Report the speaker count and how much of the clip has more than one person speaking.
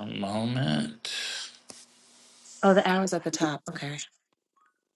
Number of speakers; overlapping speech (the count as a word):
two, no overlap